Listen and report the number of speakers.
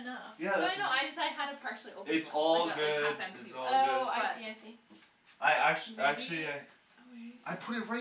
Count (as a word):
three